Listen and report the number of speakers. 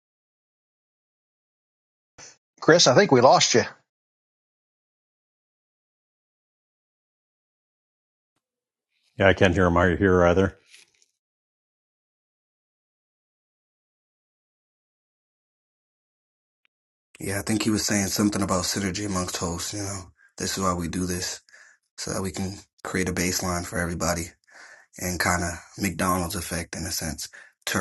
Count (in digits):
3